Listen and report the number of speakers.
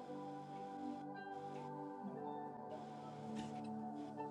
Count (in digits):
0